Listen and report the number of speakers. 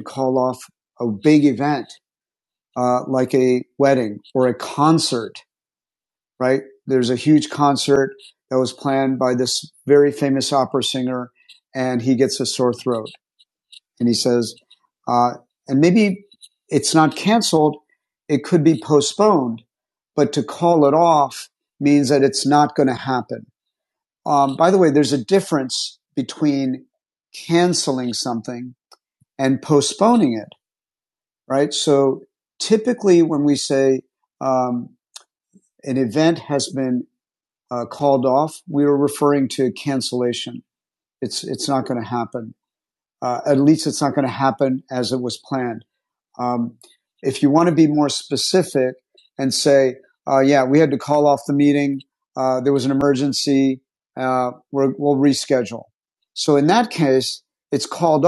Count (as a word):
one